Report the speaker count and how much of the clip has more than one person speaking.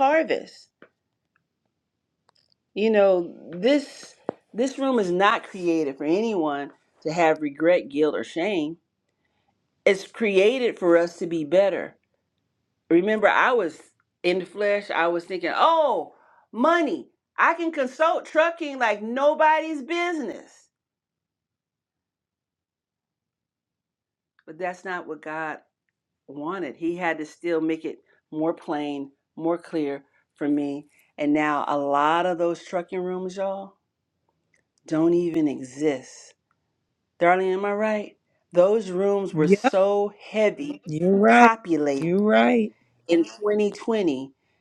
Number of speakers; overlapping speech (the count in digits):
2, about 1%